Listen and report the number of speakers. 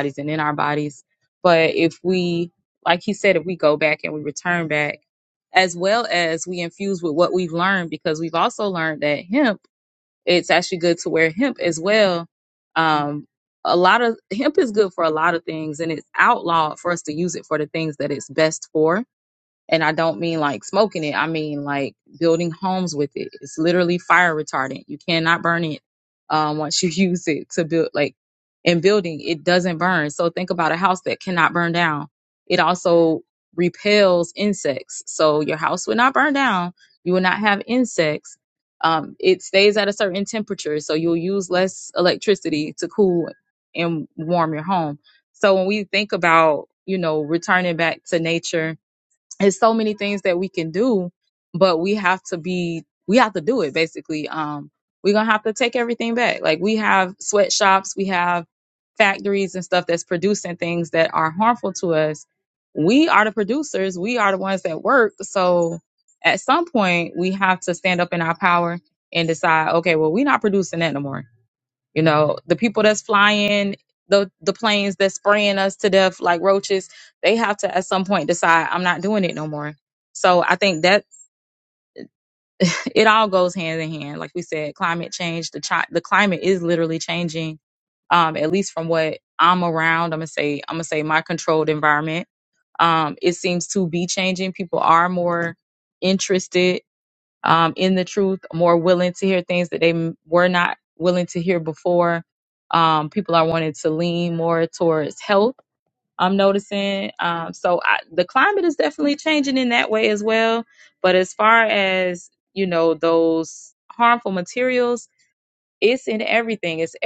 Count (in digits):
1